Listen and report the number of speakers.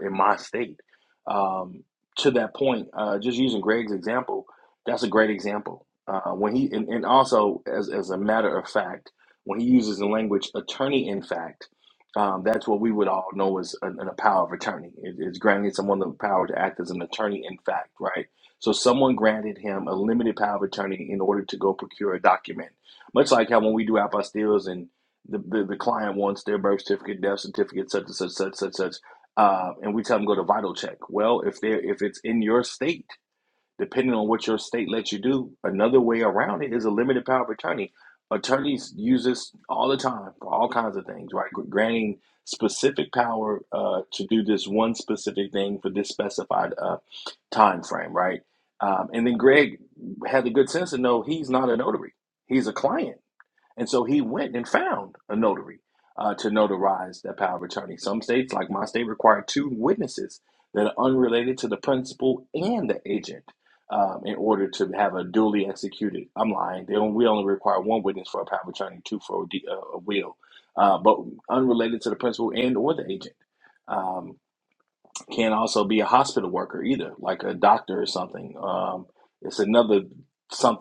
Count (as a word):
one